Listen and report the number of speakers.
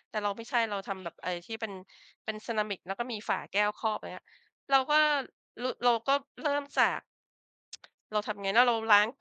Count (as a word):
one